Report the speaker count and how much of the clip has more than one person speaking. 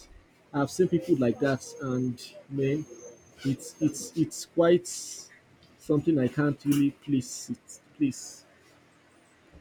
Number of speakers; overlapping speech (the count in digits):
1, no overlap